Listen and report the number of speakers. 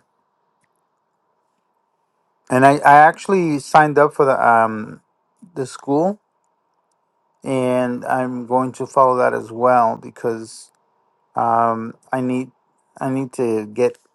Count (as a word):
one